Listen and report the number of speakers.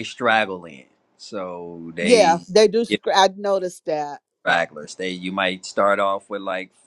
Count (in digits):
2